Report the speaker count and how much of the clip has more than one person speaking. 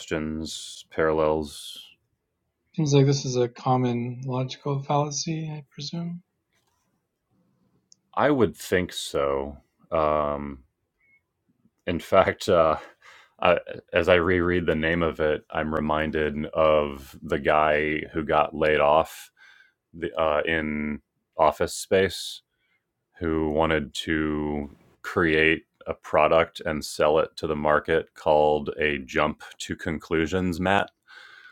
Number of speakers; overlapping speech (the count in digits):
2, no overlap